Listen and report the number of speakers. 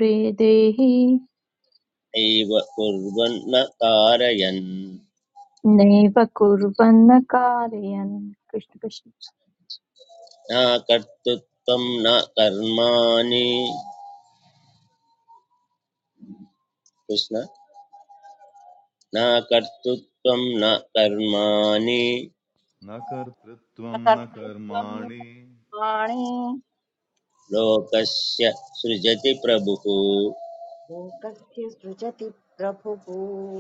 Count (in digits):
4